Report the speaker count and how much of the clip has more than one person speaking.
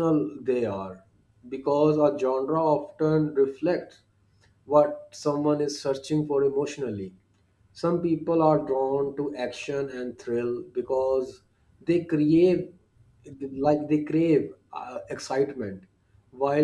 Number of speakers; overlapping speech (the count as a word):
one, no overlap